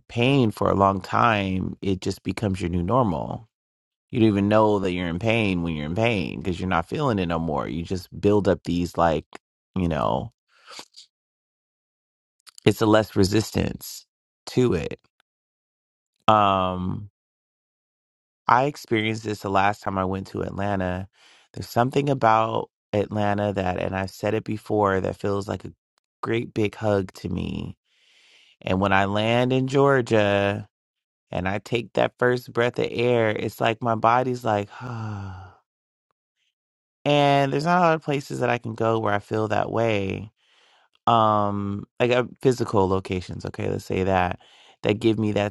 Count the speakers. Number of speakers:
one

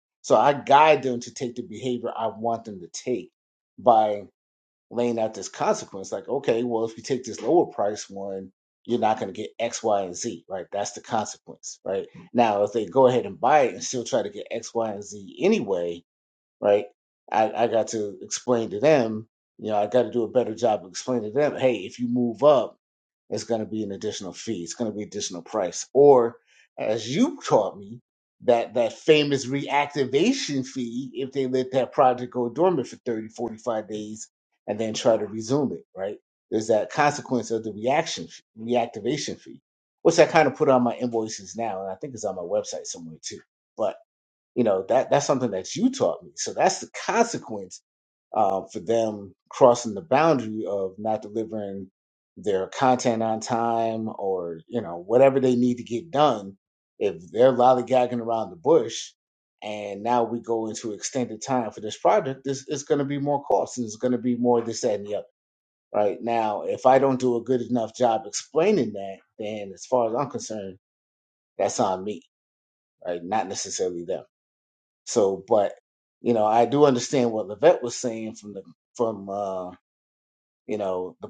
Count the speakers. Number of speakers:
one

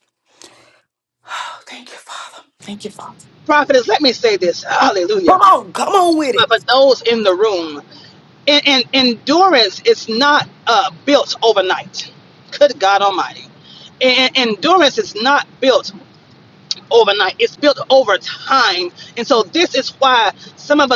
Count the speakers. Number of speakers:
two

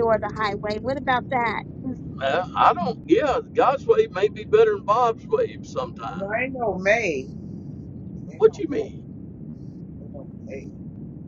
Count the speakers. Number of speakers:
three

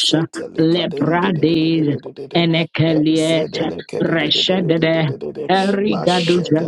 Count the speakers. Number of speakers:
two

